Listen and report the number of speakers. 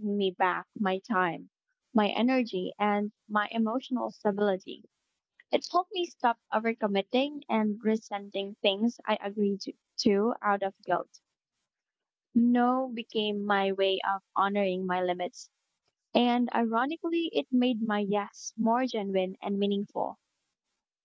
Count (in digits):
1